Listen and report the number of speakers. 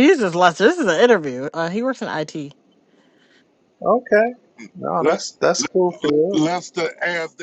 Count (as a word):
three